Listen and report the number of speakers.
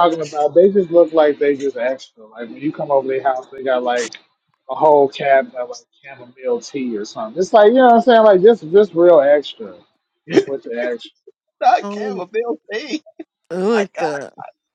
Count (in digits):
3